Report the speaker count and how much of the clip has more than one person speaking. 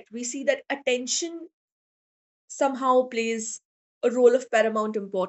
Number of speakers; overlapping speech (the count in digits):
1, no overlap